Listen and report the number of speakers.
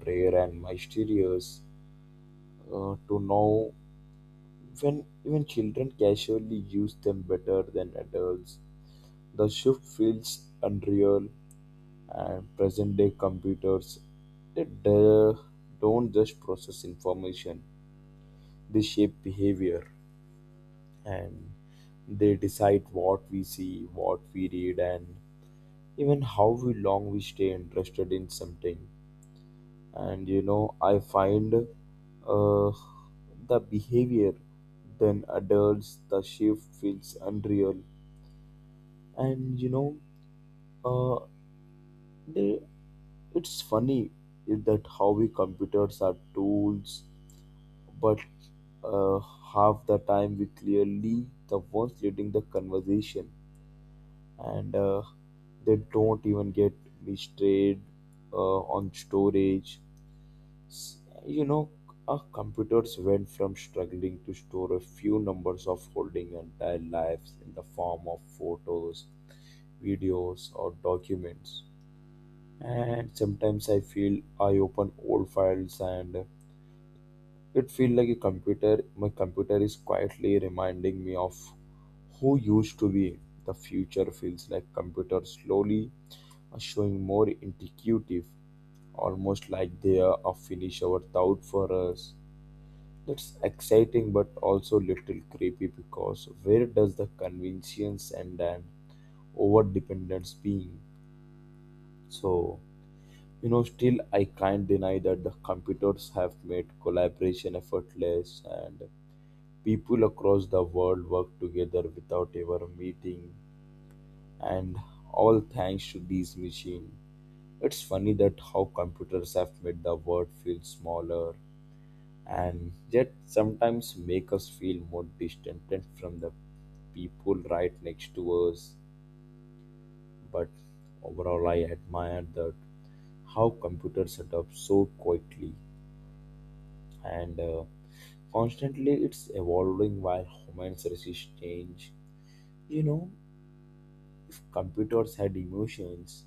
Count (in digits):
1